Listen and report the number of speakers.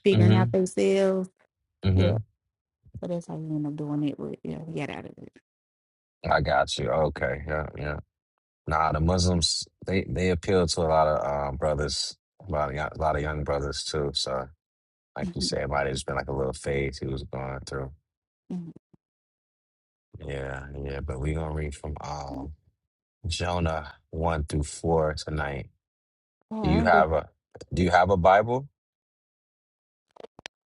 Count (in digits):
2